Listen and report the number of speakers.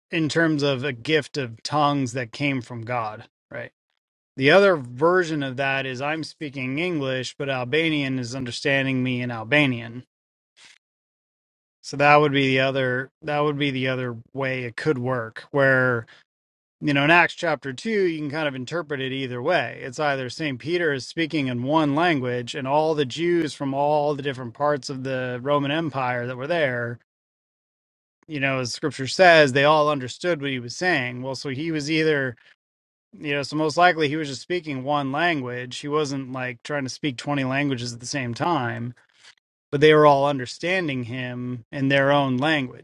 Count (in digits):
1